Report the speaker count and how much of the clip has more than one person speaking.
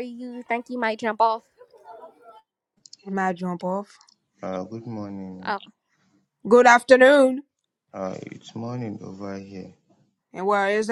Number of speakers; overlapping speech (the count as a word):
three, about 1%